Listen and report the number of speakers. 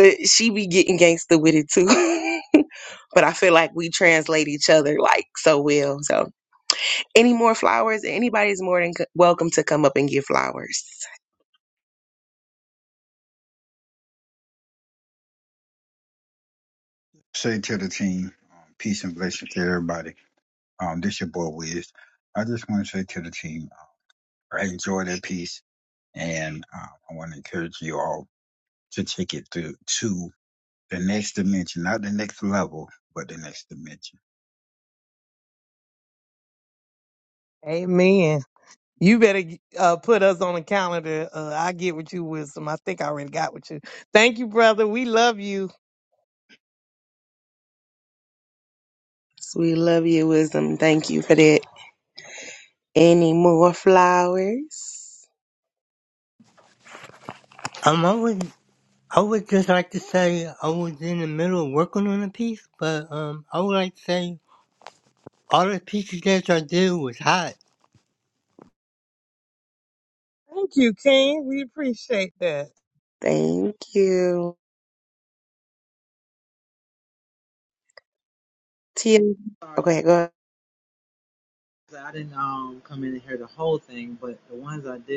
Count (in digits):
5